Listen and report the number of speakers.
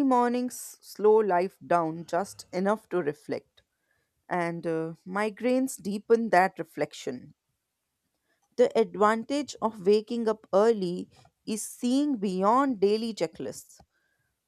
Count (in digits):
1